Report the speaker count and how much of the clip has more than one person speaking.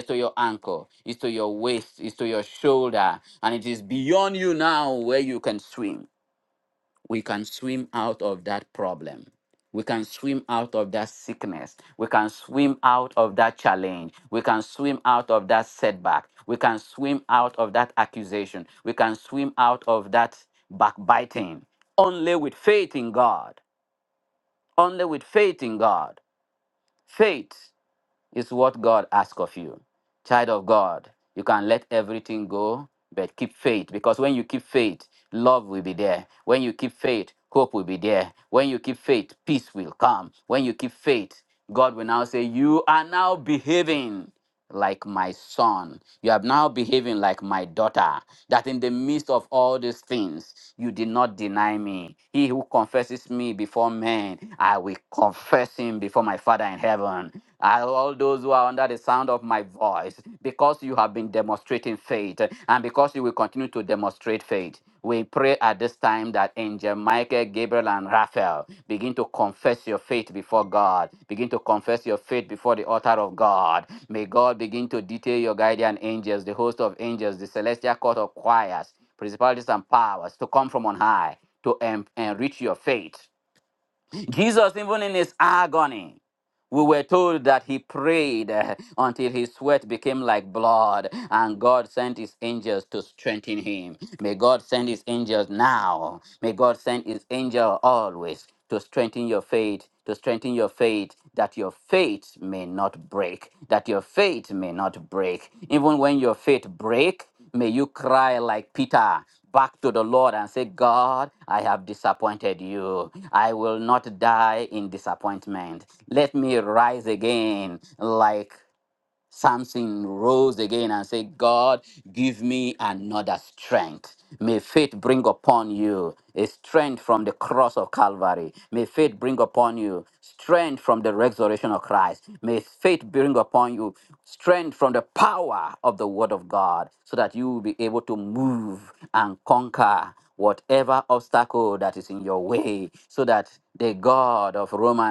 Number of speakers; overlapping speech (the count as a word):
one, no overlap